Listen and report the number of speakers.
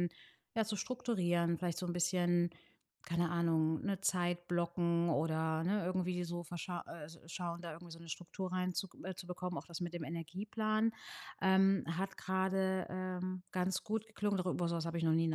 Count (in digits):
1